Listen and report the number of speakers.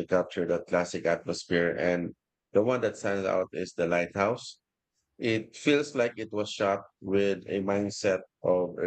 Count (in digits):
1